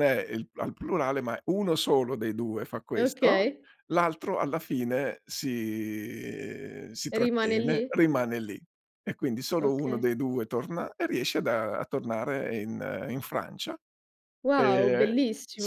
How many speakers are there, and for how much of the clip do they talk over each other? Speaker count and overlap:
2, about 15%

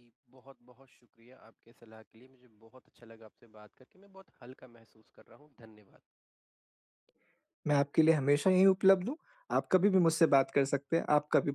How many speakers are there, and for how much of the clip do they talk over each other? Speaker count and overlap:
2, no overlap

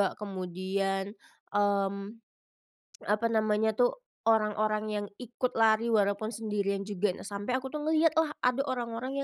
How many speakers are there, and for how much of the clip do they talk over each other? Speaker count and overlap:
1, no overlap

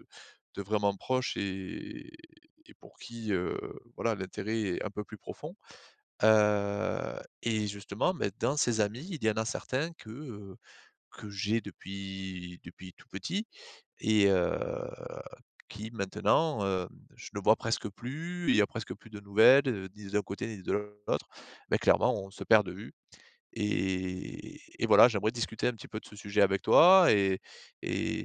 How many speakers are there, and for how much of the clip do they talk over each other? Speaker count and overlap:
1, no overlap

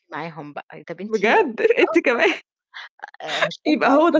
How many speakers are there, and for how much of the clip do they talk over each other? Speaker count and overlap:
2, about 13%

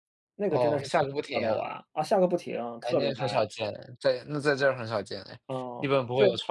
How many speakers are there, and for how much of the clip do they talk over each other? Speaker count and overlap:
2, about 30%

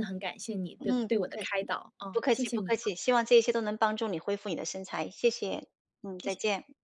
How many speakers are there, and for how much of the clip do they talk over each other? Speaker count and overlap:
2, about 22%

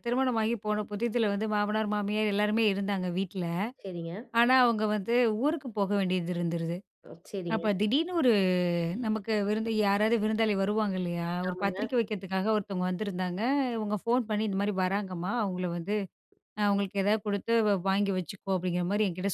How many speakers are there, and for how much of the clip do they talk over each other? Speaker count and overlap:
2, about 3%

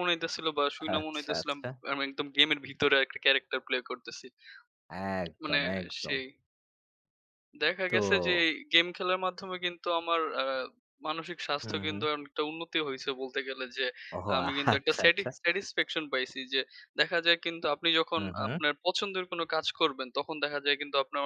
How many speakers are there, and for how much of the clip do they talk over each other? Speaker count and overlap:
2, about 18%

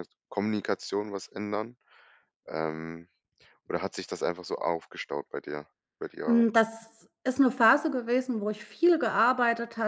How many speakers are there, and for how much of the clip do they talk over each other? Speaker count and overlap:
2, about 2%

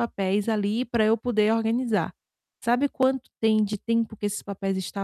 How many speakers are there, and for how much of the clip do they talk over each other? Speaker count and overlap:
1, no overlap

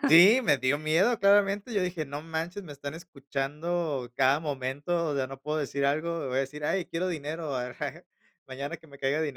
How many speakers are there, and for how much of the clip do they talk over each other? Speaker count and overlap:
1, no overlap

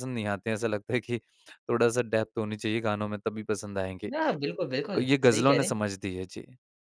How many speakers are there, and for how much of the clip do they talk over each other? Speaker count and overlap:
2, about 11%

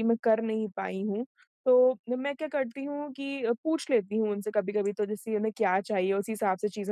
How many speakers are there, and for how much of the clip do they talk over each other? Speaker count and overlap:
1, no overlap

